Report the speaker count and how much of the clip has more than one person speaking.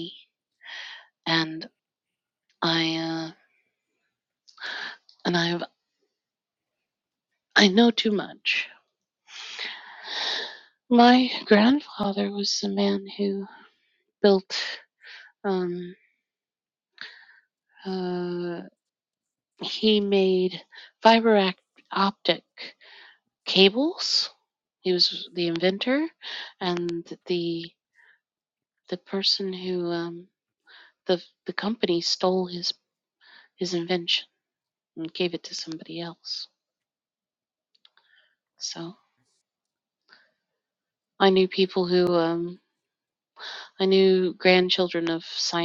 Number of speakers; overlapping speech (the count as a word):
one, no overlap